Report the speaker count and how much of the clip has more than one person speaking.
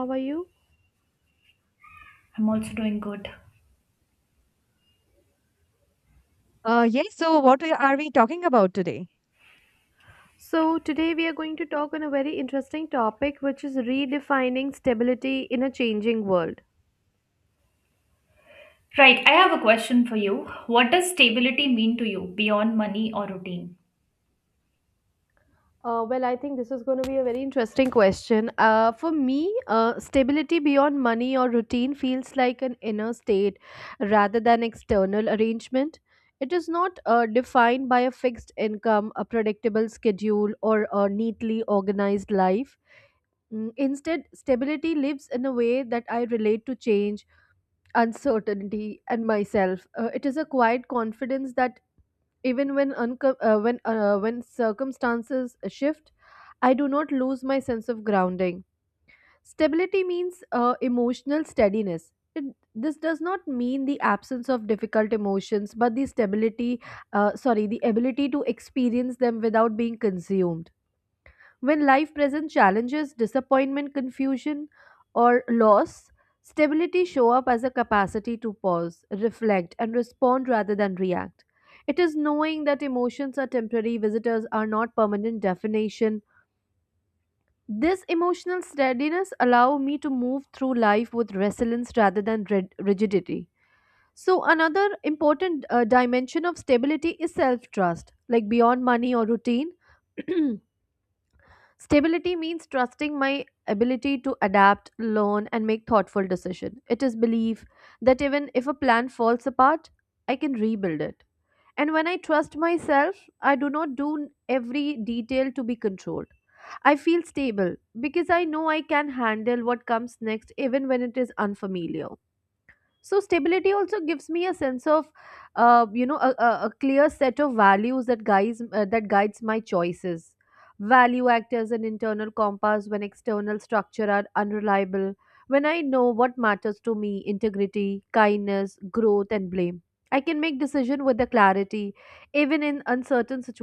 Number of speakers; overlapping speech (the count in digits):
3, no overlap